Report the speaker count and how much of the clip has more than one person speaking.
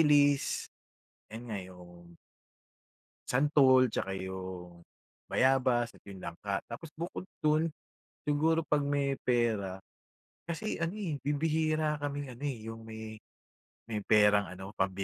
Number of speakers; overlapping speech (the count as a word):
one, no overlap